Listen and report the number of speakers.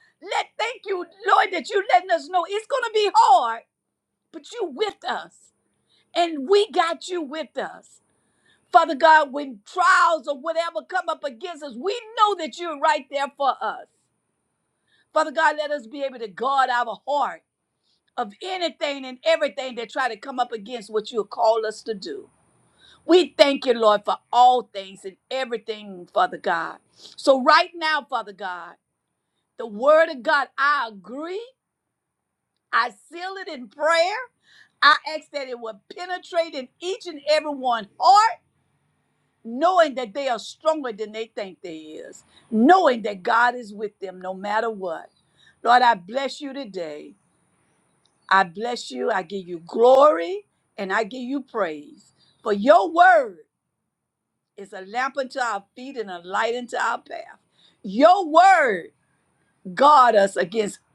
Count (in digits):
1